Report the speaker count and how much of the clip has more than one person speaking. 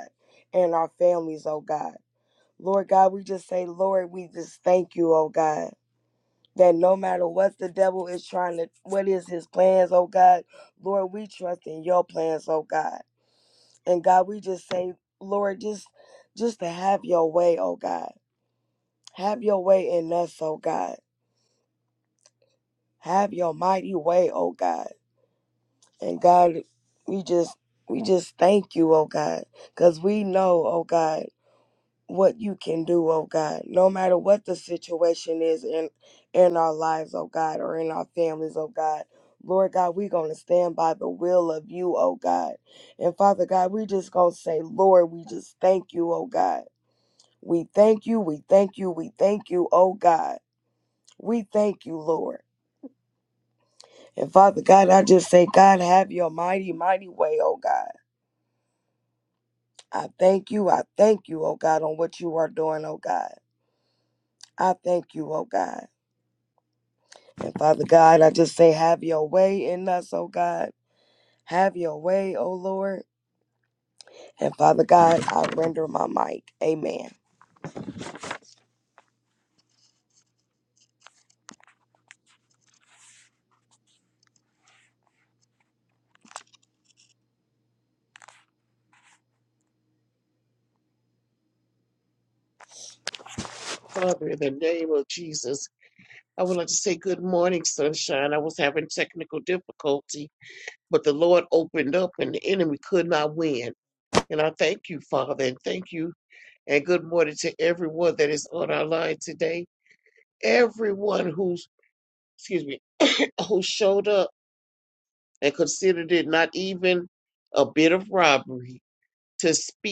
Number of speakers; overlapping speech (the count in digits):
2, no overlap